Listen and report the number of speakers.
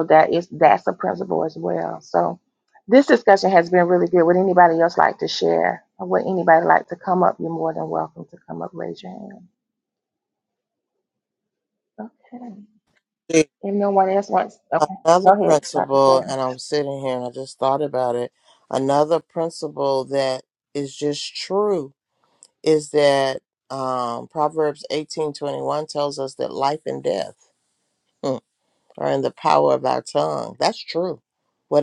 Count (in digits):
2